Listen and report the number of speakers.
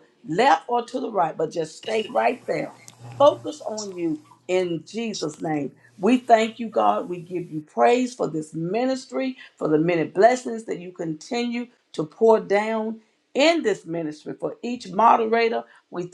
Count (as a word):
one